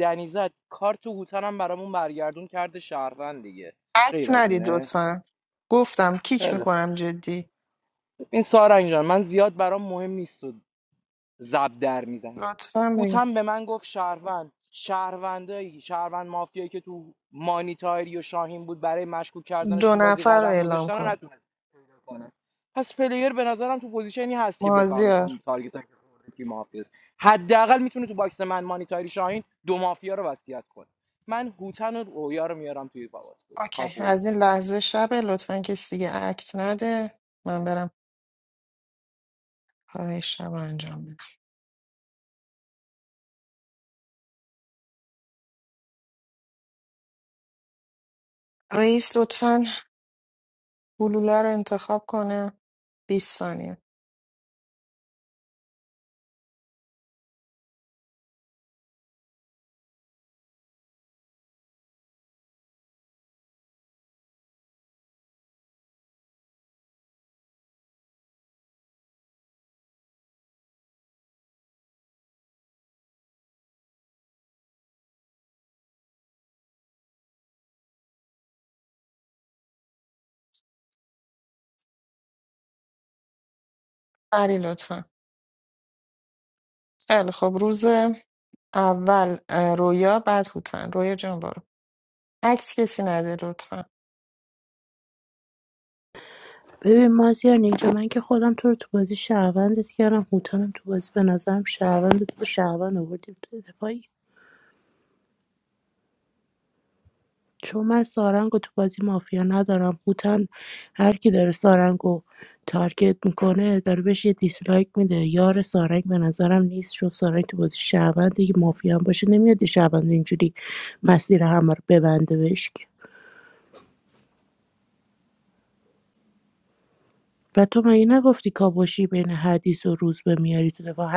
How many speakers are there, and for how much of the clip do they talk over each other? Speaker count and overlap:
three, about 3%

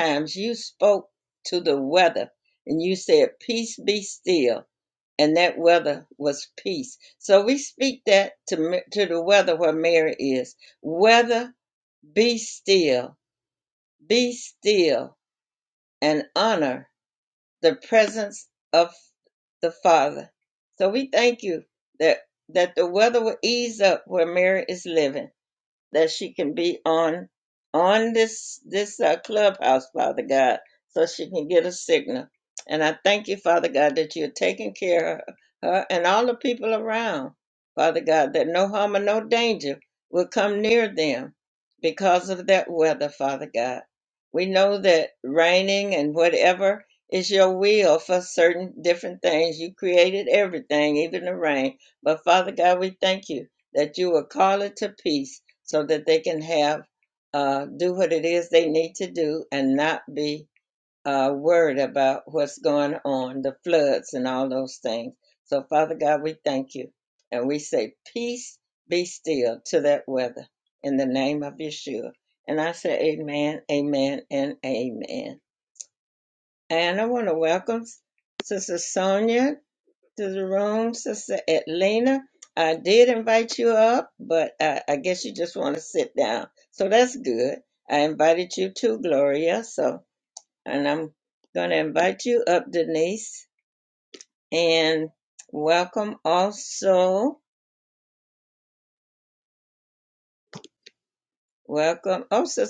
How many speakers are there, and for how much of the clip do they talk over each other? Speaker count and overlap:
one, no overlap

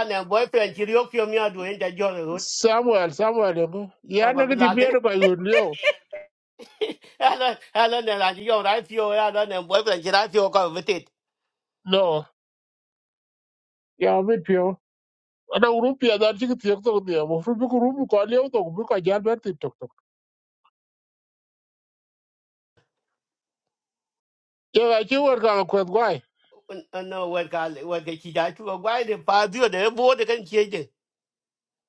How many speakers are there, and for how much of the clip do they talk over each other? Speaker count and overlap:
two, about 3%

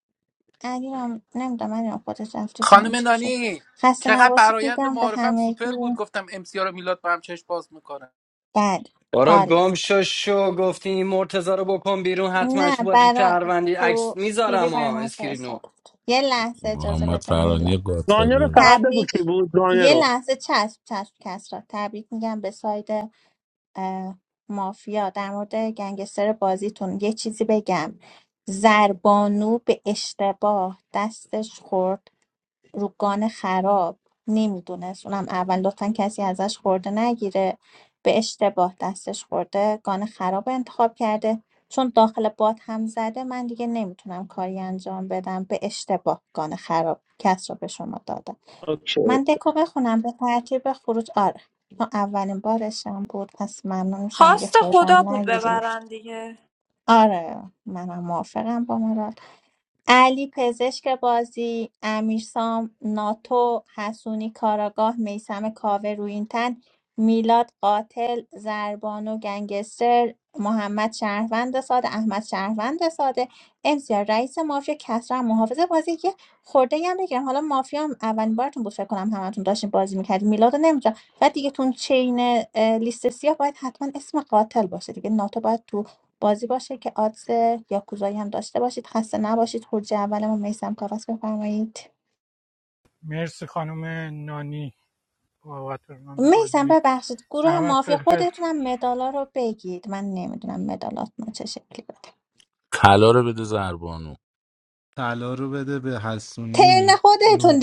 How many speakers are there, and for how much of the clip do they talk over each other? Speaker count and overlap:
eight, about 10%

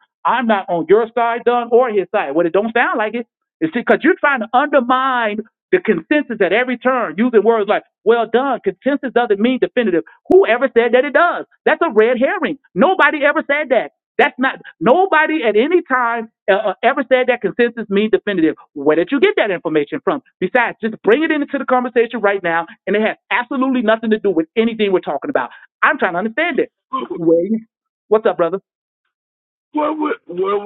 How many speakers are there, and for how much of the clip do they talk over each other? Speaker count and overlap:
two, under 1%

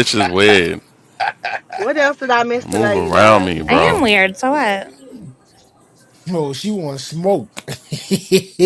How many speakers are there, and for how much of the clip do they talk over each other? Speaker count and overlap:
four, about 14%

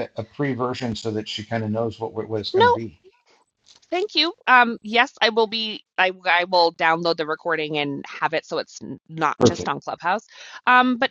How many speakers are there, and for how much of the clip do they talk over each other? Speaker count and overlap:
two, about 5%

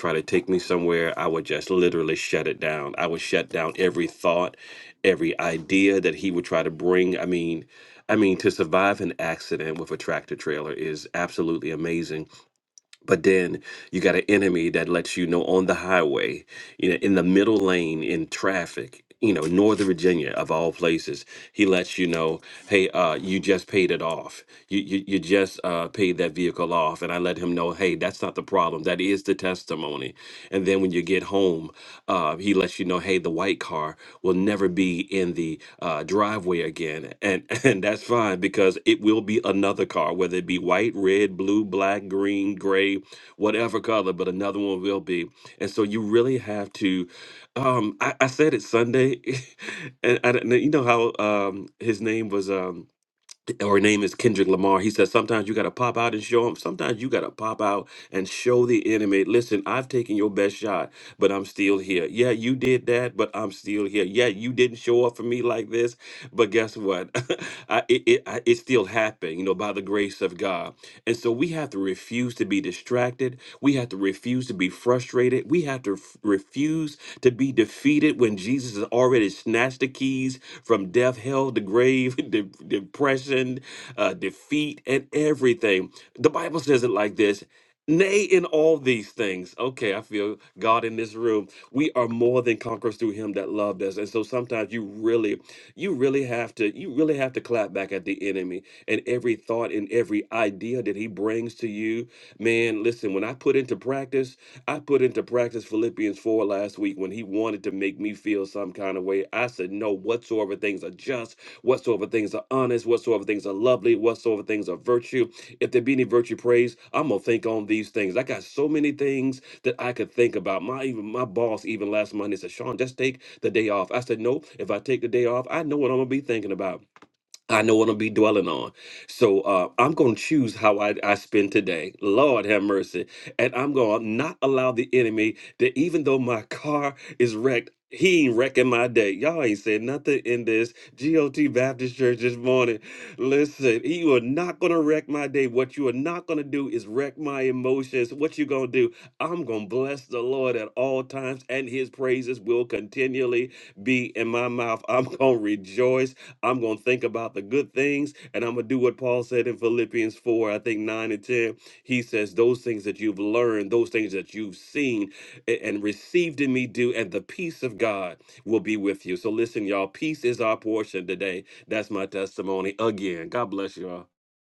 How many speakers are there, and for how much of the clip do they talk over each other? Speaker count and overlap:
one, no overlap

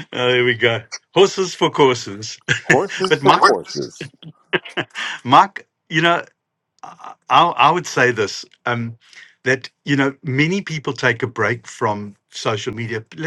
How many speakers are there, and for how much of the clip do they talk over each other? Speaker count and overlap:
two, about 3%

